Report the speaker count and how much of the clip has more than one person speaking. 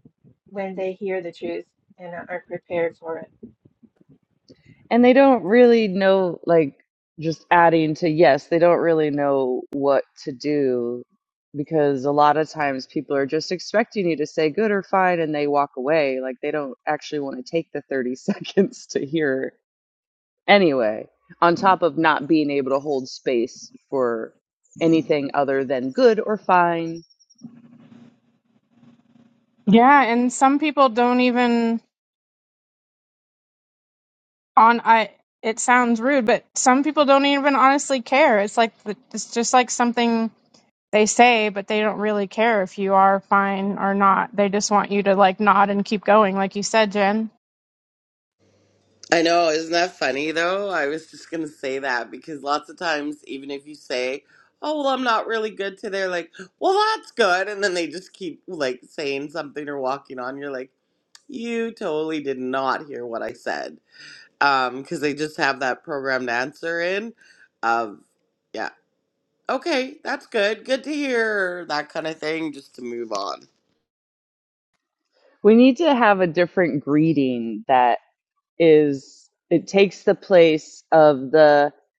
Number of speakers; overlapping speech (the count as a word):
four, no overlap